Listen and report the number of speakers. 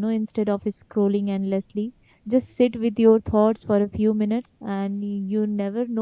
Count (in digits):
1